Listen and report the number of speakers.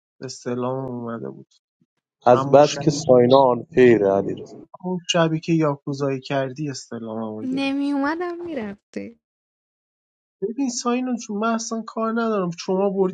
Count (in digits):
3